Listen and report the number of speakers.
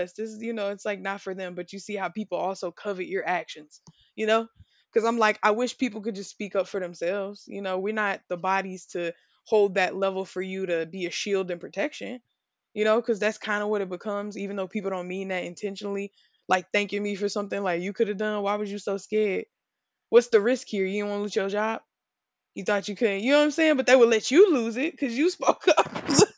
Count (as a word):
one